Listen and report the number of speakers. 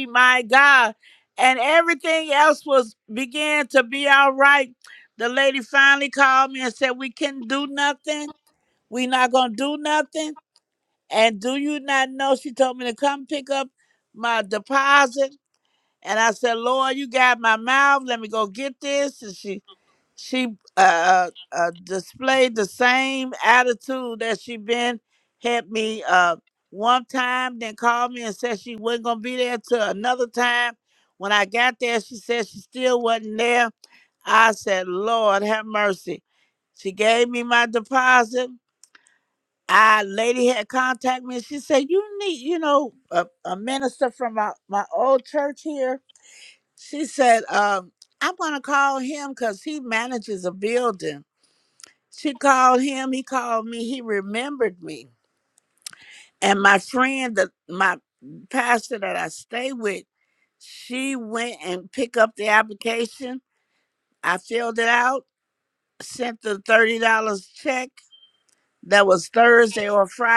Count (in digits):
1